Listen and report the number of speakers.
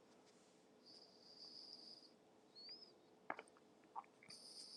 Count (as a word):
zero